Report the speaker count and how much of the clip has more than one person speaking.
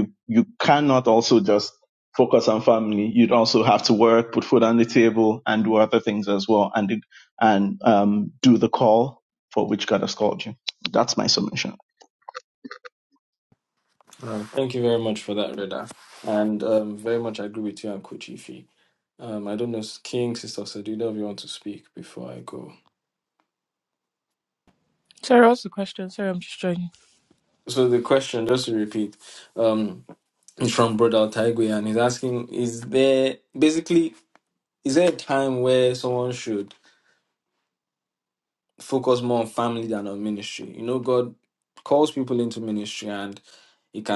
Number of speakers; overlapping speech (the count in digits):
3, no overlap